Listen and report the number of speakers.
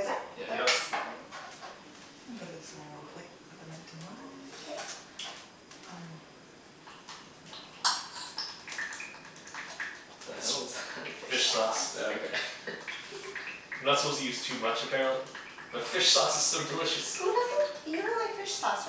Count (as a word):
four